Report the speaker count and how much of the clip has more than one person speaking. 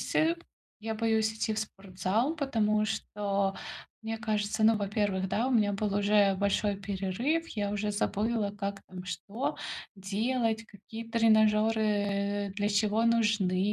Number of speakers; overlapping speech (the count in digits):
1, no overlap